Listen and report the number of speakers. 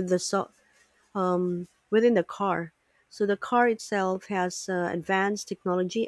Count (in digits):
1